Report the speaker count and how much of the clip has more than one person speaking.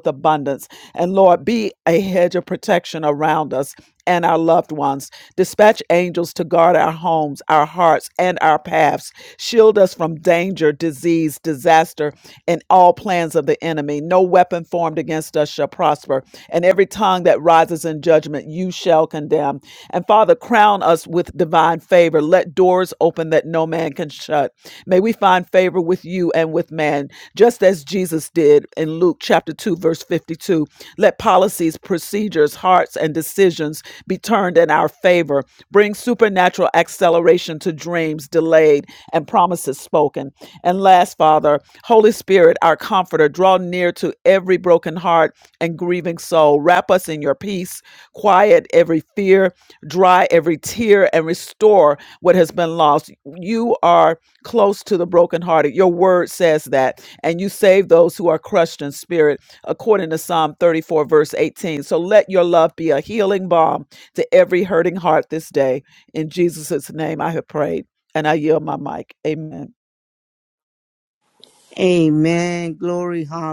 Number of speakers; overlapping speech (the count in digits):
2, no overlap